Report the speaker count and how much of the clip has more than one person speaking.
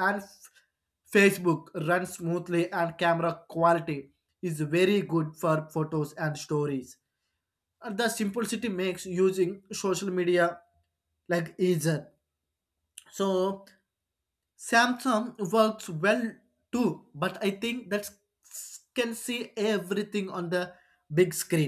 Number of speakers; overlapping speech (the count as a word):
one, no overlap